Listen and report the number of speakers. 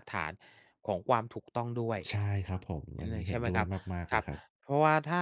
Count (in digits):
2